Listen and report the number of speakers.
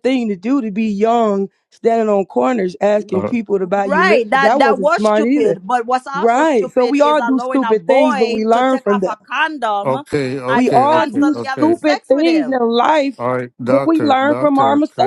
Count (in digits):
3